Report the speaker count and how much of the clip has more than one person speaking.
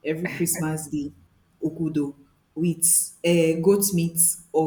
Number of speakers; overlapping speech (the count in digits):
1, no overlap